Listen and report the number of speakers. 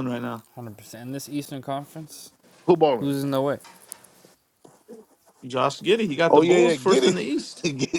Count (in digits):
3